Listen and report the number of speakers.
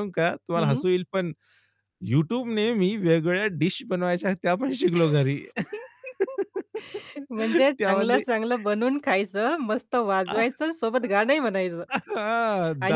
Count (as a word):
two